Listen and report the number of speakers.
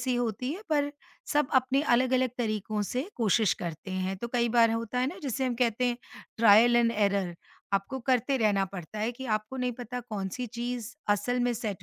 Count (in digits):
1